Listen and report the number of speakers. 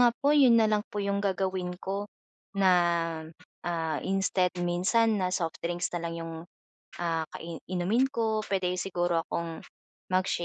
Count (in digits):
1